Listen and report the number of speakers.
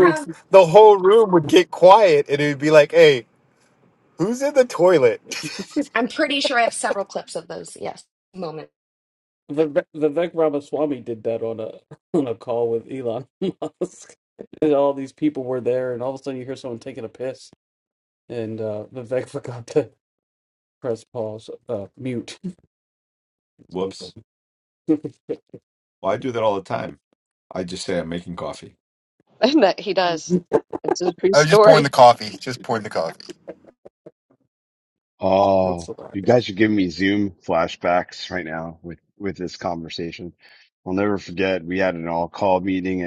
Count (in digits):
6